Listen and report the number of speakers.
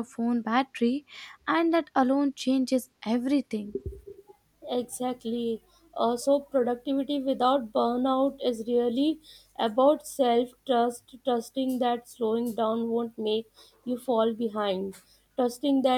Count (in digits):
2